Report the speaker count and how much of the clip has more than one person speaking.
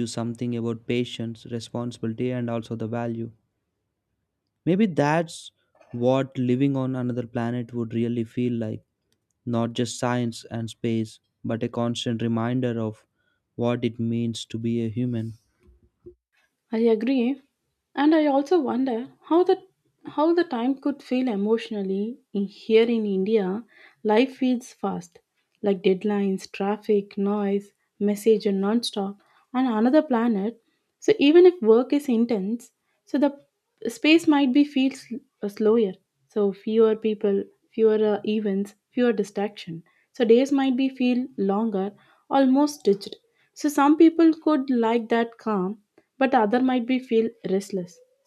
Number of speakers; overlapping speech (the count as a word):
two, no overlap